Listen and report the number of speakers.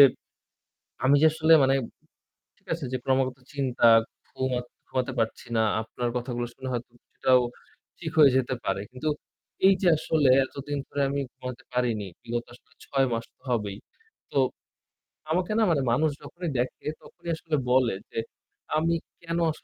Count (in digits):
1